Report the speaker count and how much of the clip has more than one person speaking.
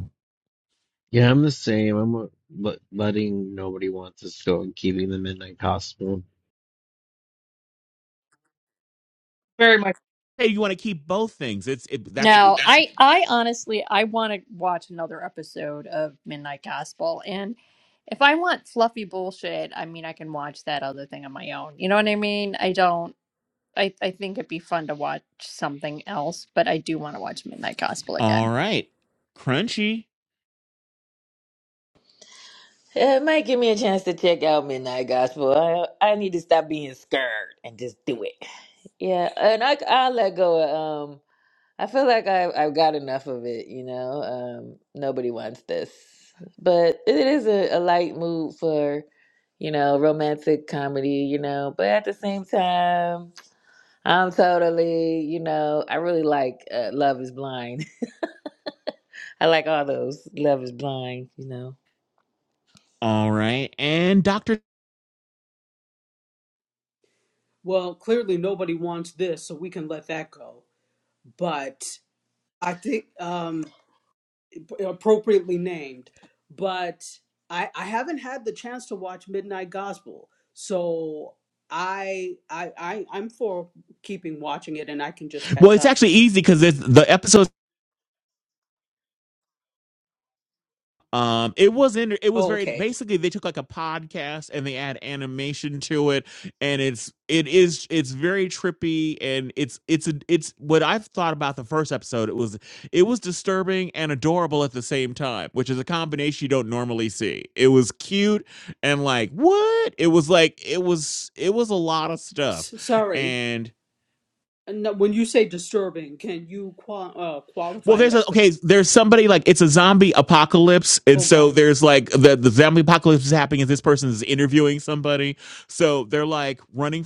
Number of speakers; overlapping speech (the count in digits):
5, about 2%